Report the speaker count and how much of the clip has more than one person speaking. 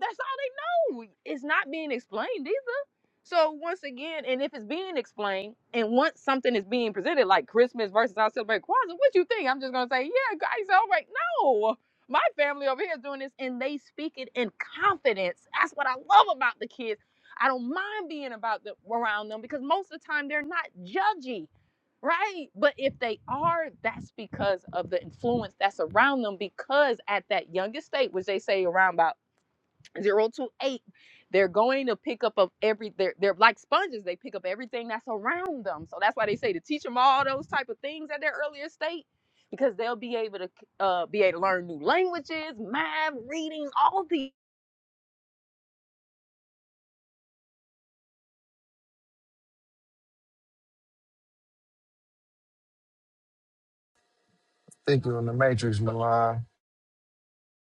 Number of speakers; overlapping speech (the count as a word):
two, no overlap